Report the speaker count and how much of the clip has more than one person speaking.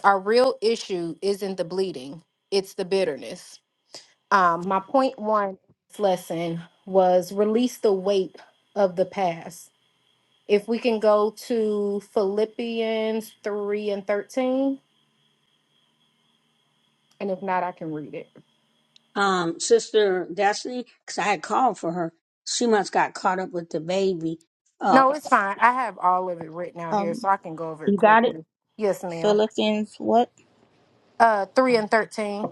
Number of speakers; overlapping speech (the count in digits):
3, about 4%